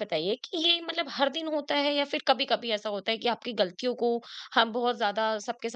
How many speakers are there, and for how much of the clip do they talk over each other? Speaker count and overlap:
one, no overlap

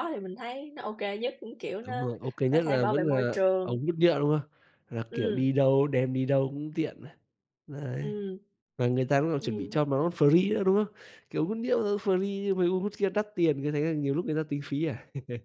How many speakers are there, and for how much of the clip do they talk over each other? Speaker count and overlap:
two, about 14%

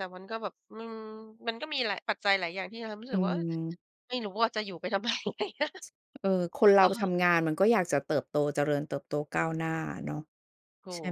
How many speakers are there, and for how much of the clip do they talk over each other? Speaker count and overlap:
two, about 7%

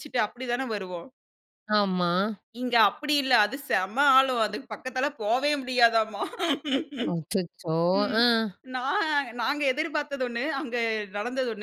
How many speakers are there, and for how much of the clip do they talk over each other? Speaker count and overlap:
two, about 1%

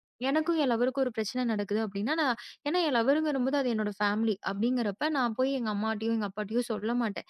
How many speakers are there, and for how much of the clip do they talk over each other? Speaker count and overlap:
one, no overlap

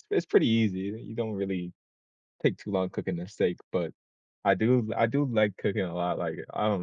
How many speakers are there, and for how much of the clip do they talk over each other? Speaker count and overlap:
one, no overlap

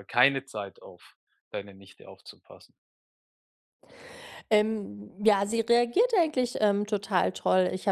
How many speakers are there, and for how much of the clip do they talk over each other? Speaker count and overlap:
two, no overlap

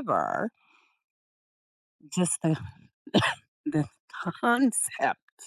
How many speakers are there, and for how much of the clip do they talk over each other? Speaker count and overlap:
one, no overlap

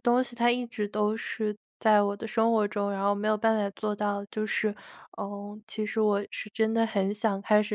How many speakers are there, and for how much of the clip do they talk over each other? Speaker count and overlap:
one, no overlap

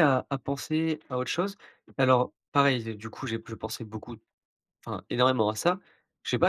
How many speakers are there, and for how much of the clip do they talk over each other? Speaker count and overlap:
one, no overlap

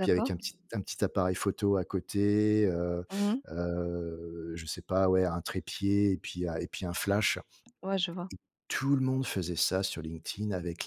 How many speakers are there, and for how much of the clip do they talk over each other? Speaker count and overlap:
two, about 3%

